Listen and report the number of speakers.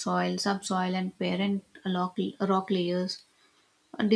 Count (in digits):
1